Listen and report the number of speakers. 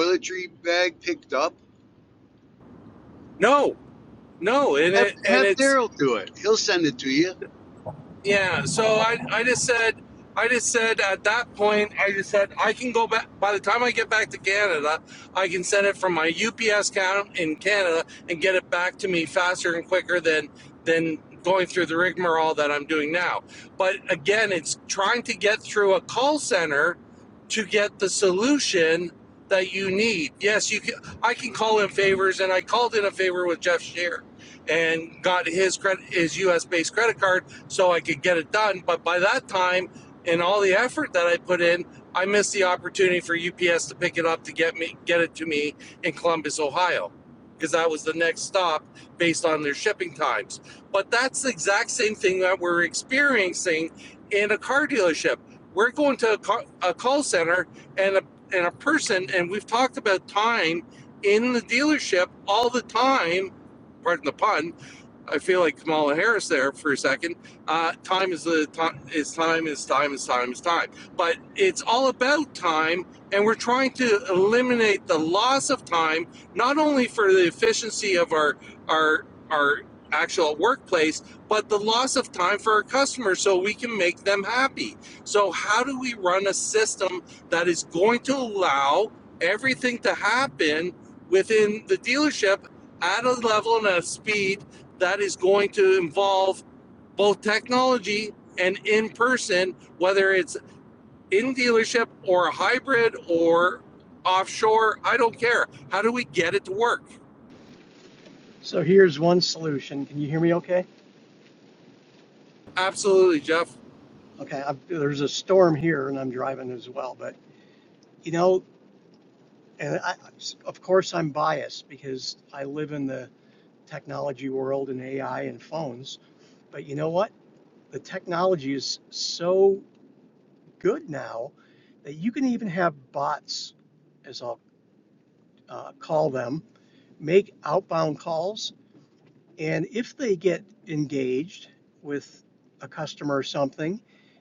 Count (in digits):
3